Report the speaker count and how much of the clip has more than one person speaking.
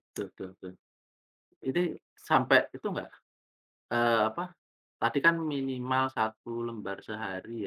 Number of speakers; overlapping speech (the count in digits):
1, no overlap